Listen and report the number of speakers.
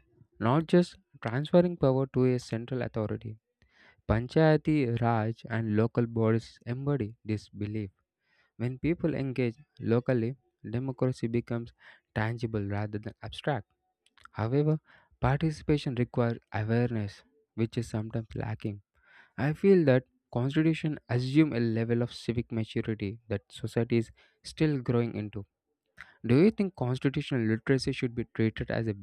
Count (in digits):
1